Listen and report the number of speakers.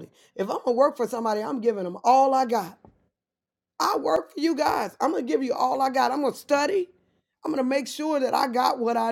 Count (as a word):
one